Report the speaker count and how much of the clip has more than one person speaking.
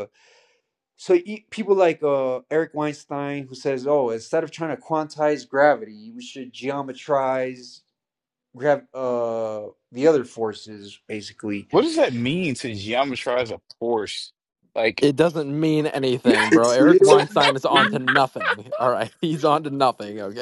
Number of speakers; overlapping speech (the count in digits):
3, about 8%